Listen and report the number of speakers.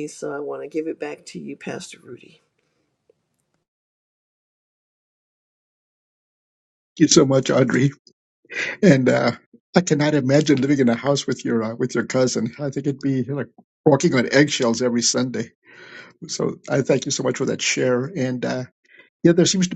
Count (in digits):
2